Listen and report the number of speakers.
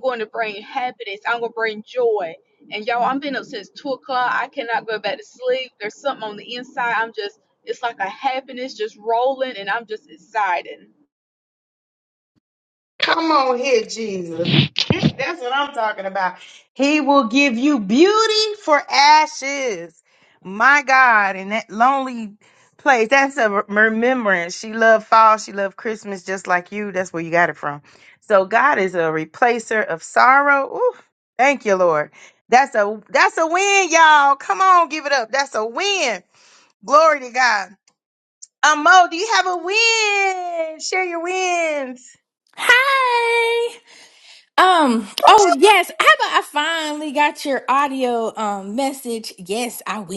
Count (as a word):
three